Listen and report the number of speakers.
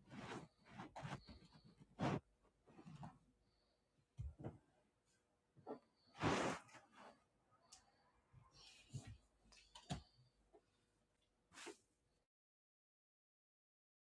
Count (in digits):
0